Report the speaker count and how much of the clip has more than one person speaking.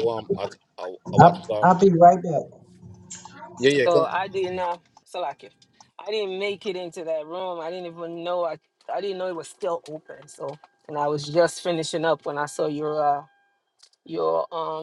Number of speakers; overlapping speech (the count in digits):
3, about 5%